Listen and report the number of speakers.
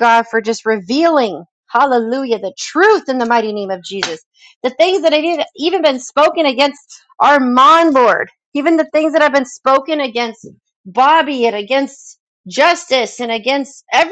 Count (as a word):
one